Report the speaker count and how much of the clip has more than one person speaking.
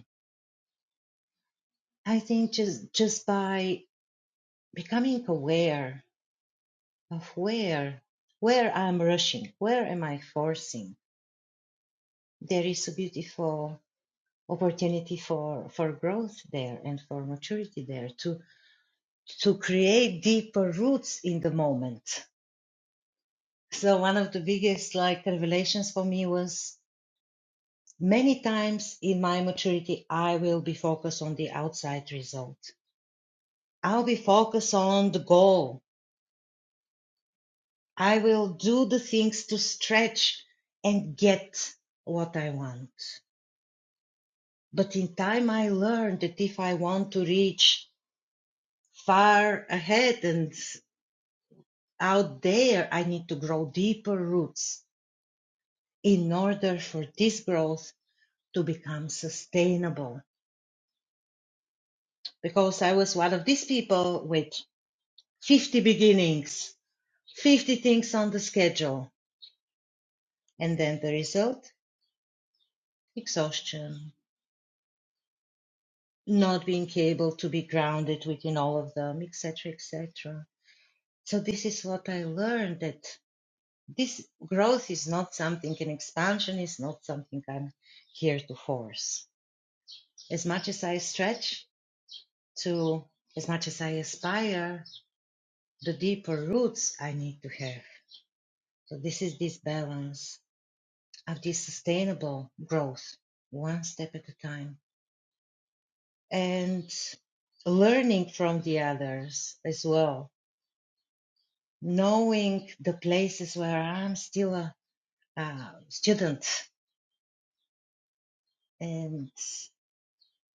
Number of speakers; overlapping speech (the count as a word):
one, no overlap